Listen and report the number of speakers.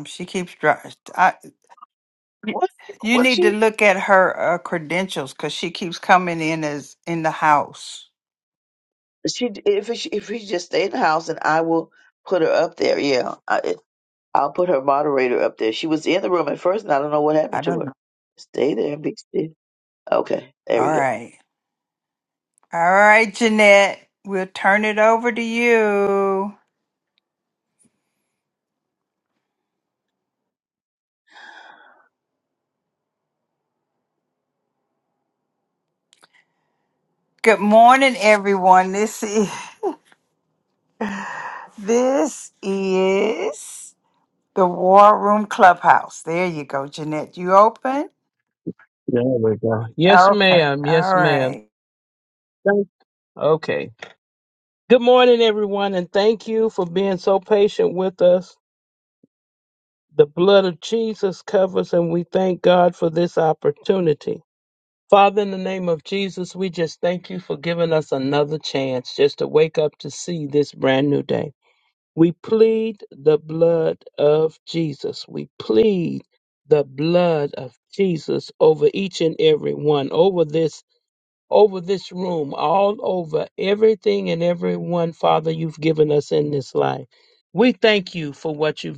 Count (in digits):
3